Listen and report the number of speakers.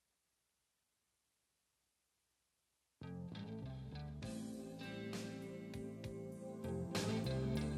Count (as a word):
zero